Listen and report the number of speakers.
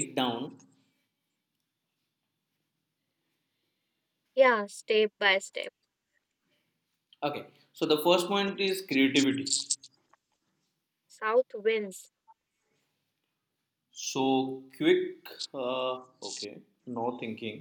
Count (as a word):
two